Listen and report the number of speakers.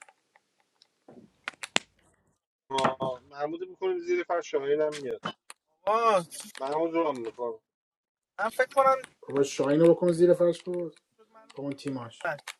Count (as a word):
three